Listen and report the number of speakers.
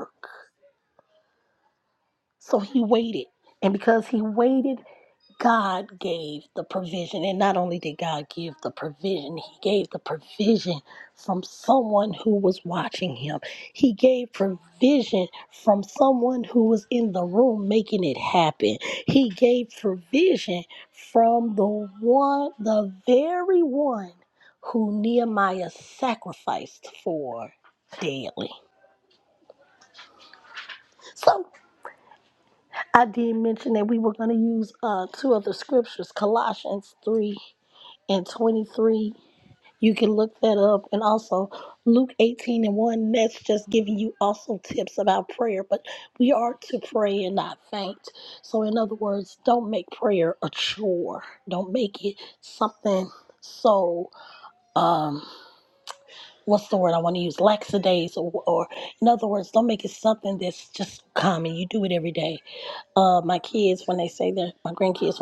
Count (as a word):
one